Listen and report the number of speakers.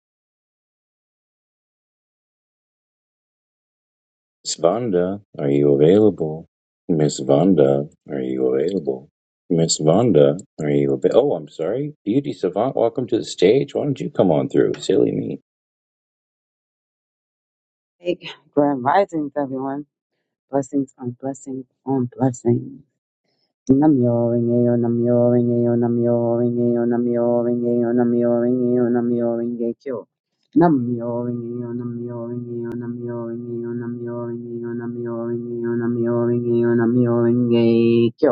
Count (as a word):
two